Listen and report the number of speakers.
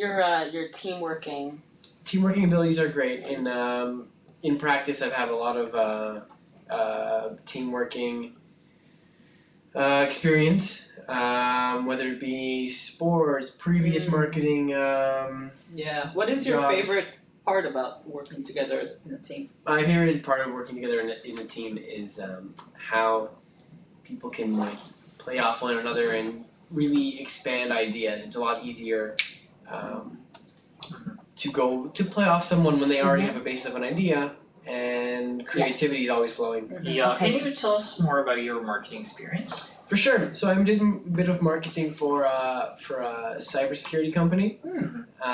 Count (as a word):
four